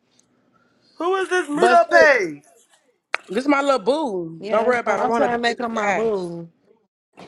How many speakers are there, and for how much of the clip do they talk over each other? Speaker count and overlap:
3, about 29%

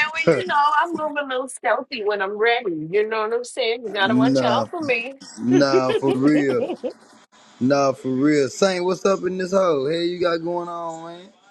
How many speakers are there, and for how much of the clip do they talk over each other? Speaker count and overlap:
2, about 6%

